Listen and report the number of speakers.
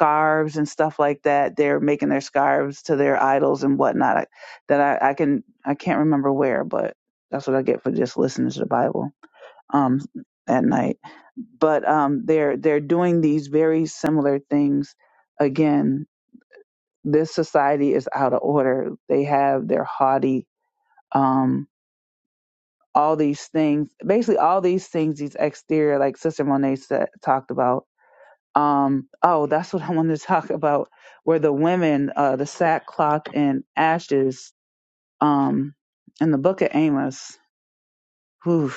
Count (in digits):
1